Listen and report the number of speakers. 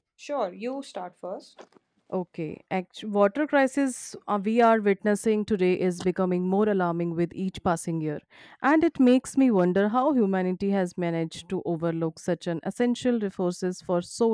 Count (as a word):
two